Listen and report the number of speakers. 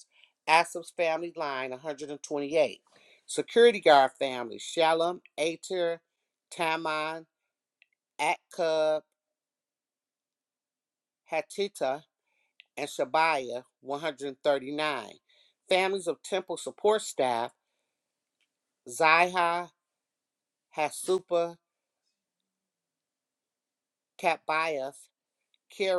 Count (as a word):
one